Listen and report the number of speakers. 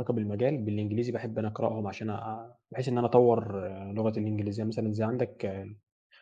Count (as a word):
one